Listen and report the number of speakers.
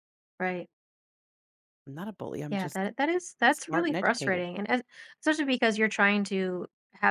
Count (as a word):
two